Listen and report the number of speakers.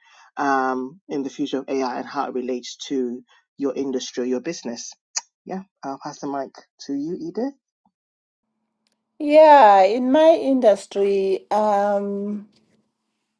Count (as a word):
two